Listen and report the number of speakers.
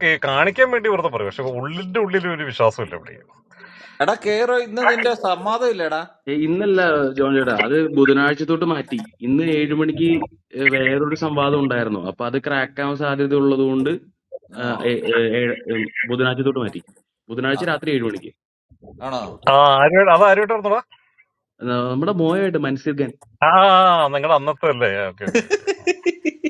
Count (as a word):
three